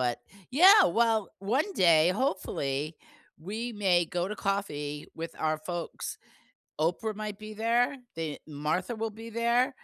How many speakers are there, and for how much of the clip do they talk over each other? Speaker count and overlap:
one, no overlap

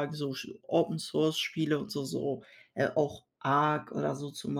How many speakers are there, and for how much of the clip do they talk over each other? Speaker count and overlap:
one, no overlap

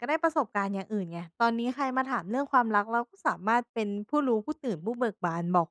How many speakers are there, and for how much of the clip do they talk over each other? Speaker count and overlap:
one, no overlap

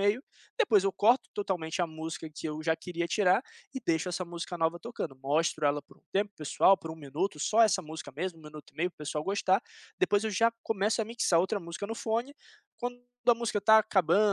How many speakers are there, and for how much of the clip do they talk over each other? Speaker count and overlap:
one, no overlap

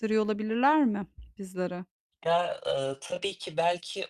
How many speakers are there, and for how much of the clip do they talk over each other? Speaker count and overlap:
two, no overlap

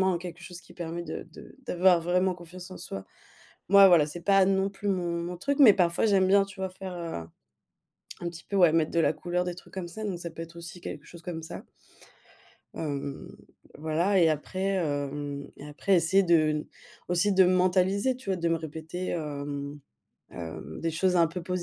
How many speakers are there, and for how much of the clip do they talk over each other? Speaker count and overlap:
one, no overlap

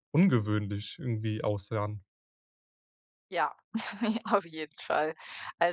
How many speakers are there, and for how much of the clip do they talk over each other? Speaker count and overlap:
two, no overlap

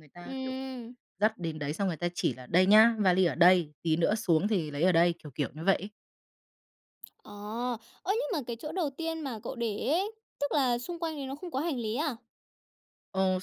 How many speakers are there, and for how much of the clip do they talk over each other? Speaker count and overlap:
two, about 2%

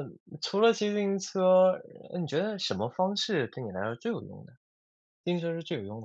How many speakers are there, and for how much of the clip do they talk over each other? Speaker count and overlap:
one, no overlap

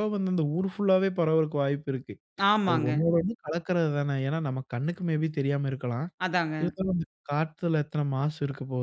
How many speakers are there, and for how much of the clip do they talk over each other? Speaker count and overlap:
two, about 6%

